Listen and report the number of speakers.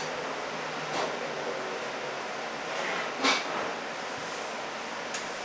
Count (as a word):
zero